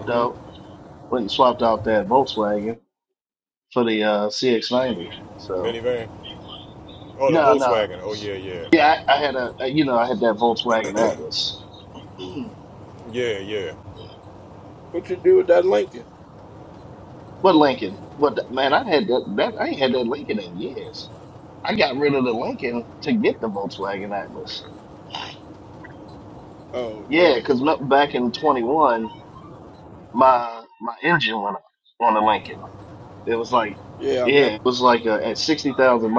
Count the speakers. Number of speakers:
3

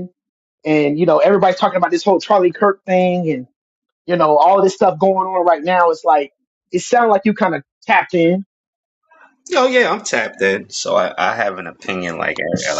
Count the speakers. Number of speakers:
2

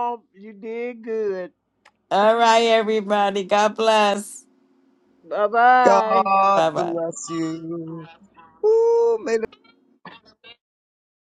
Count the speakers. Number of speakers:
3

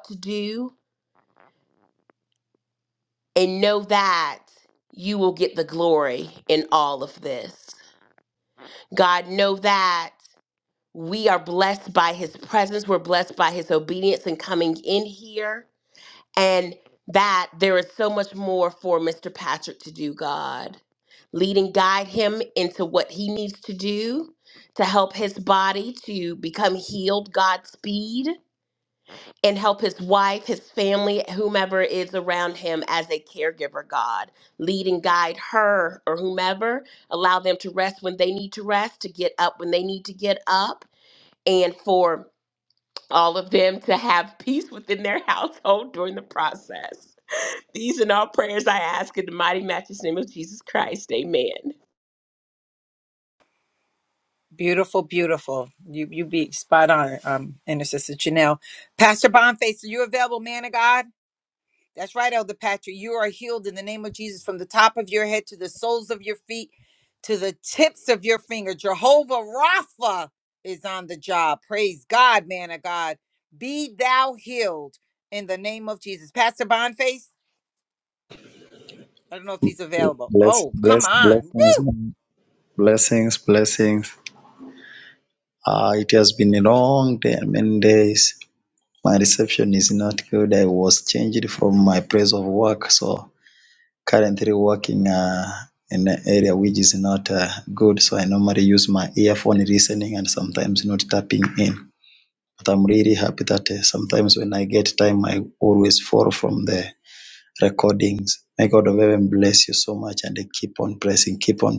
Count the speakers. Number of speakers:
3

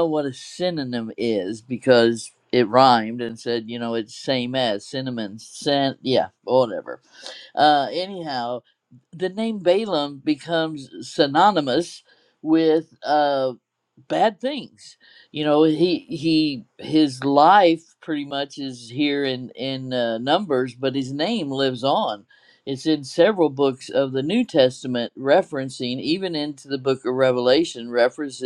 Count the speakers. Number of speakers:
1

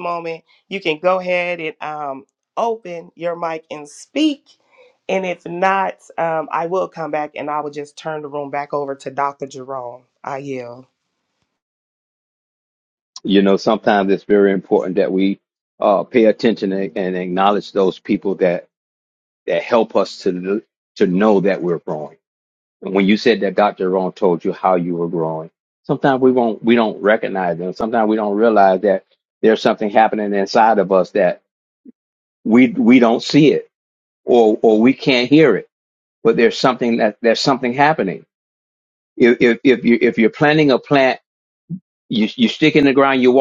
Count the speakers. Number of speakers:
2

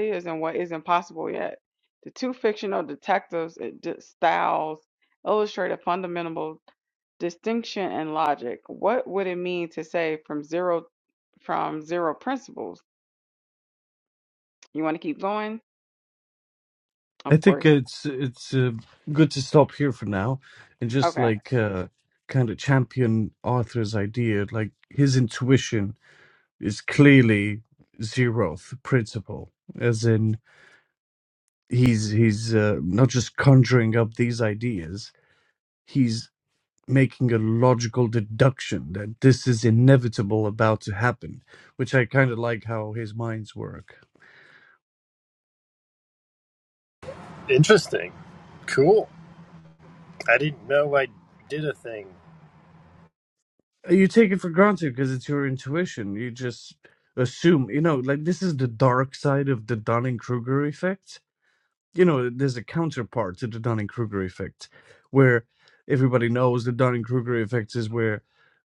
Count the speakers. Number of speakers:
3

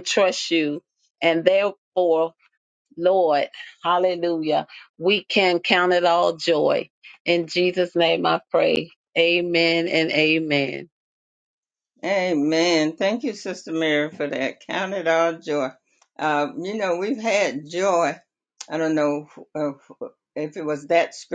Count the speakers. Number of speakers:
2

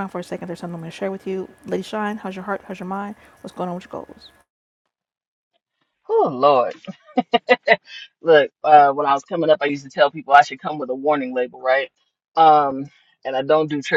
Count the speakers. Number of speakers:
2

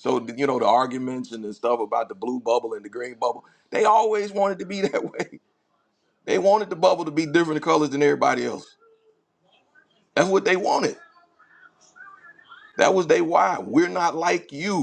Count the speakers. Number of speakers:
1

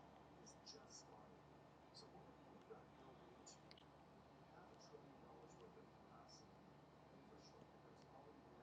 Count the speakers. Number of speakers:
0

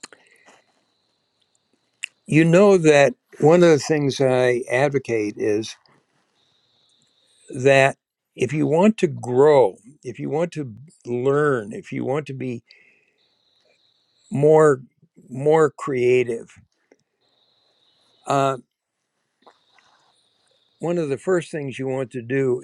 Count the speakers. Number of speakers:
1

